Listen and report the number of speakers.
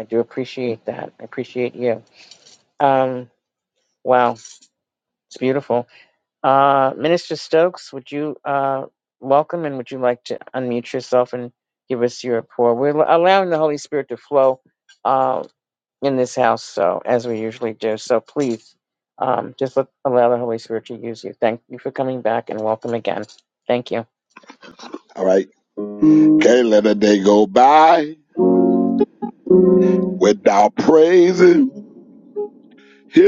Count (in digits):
2